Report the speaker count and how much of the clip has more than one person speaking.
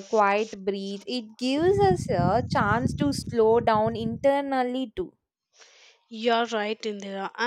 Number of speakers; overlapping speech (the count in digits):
2, no overlap